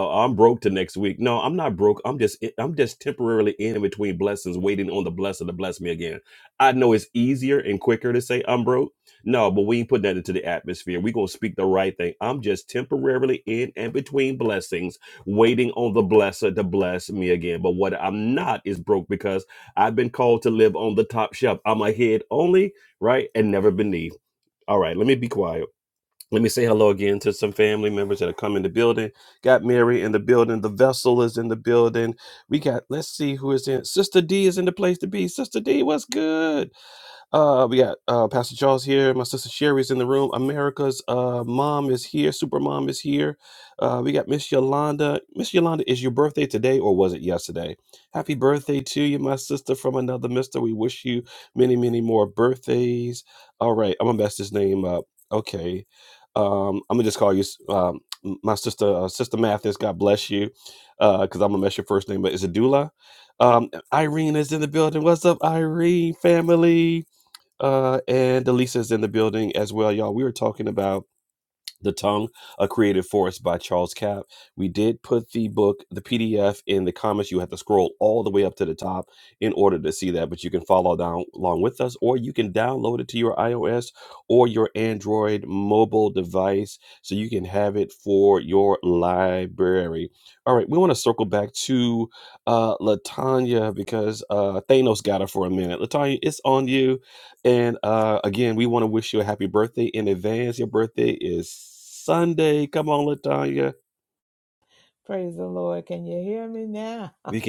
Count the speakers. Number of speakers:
2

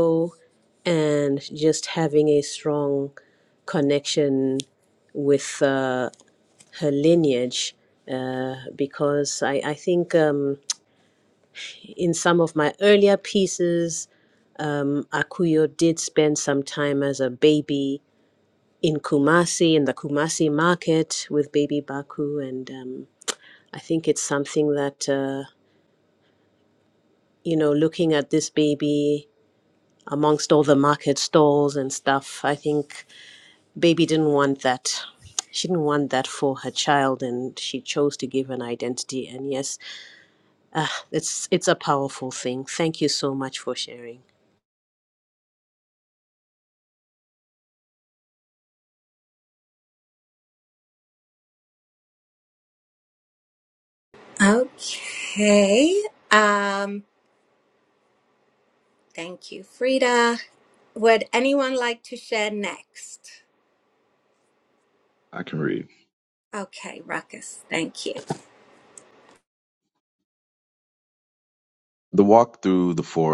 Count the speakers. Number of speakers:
3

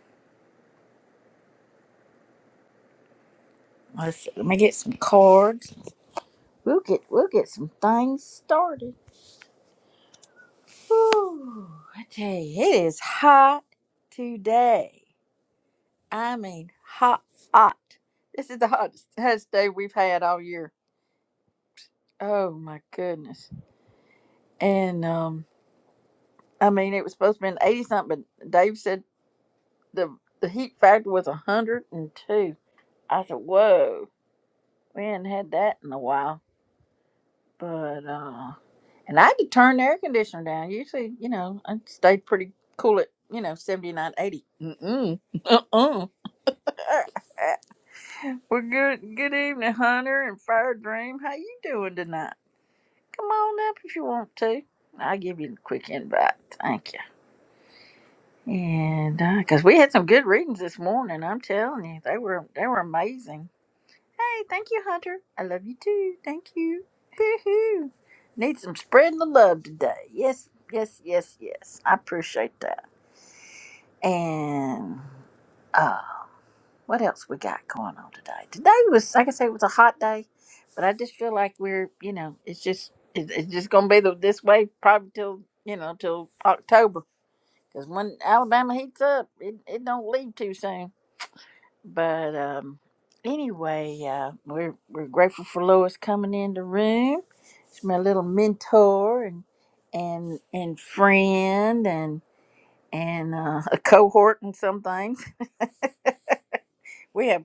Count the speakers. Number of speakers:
1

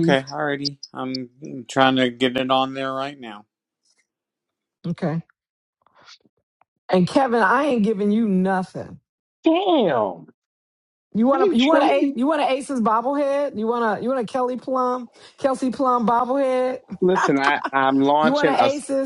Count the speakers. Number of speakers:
3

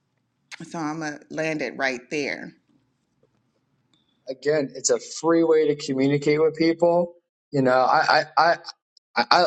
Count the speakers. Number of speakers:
2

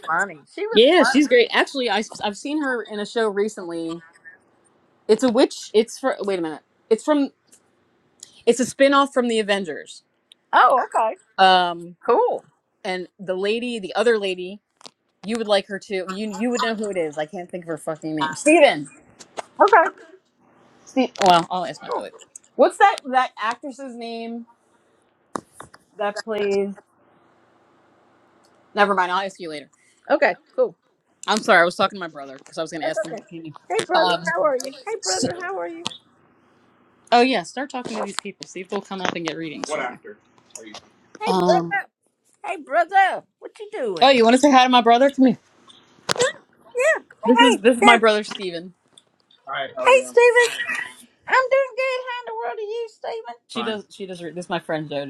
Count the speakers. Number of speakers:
2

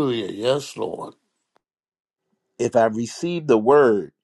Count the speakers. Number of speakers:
2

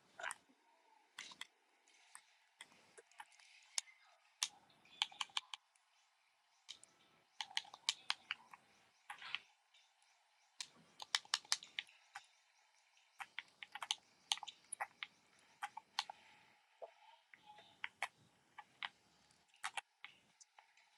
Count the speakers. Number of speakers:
0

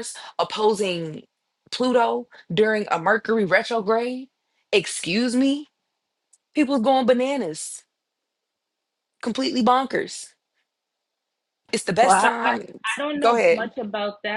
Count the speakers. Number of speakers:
2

